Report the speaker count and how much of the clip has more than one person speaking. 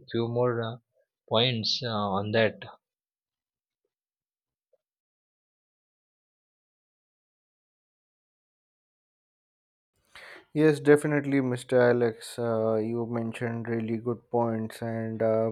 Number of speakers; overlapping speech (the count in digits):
2, no overlap